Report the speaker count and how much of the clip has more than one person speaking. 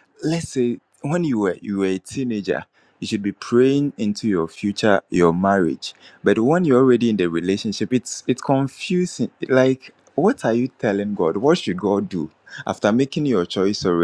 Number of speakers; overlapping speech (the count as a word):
one, no overlap